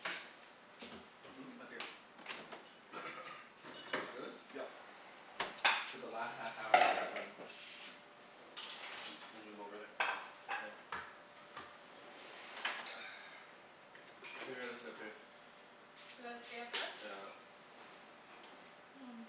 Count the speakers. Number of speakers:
3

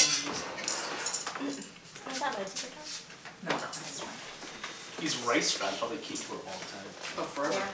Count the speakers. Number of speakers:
3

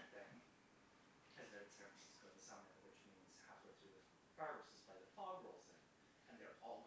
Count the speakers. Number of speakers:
1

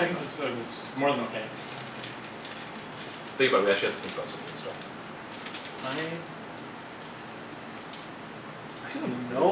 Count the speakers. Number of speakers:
2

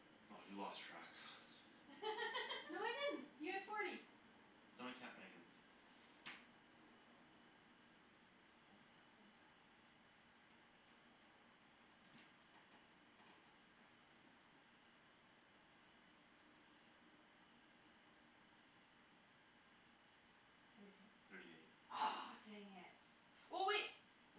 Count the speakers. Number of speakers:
3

